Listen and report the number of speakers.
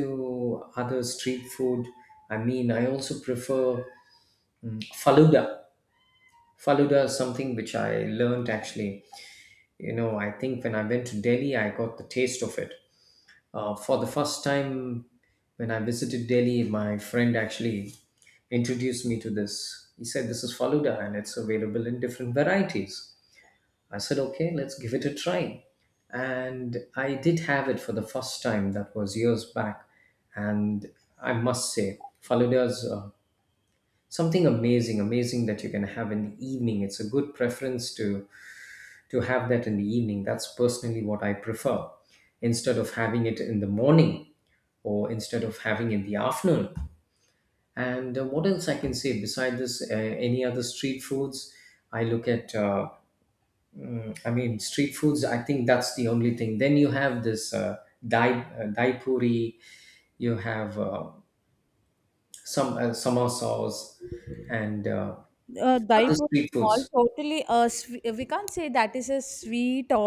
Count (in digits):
2